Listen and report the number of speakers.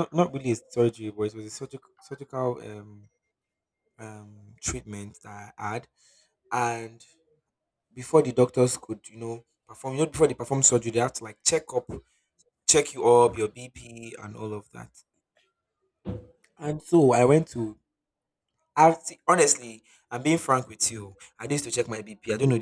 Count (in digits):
1